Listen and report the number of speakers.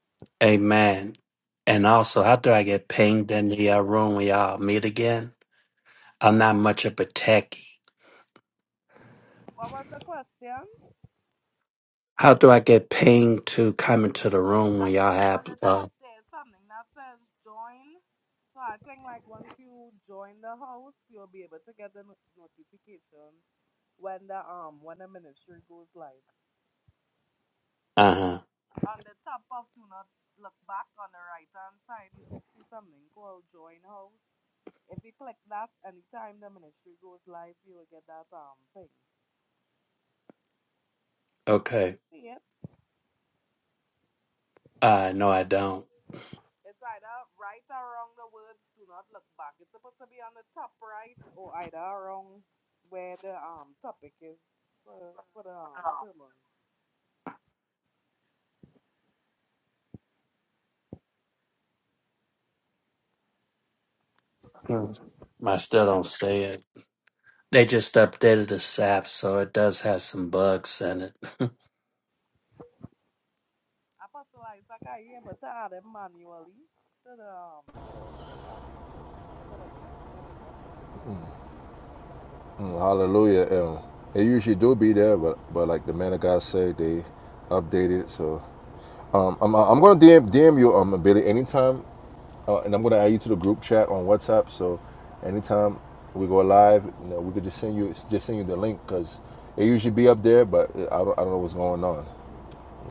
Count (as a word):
three